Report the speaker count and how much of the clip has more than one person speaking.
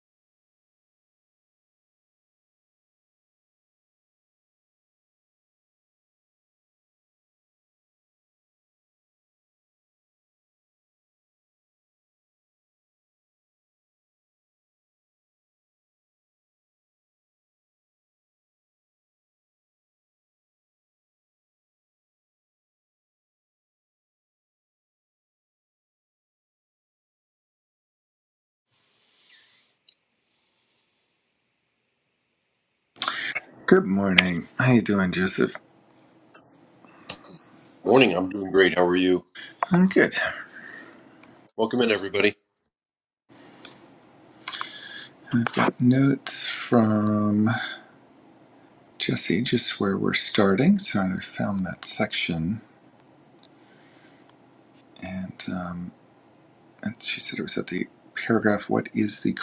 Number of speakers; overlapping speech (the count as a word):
two, no overlap